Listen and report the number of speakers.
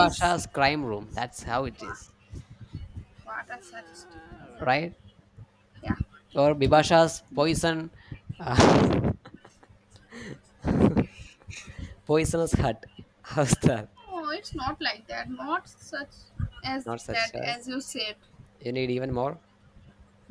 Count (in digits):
2